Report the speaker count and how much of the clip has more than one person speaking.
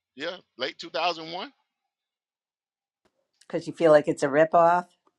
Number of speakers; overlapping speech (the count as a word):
two, no overlap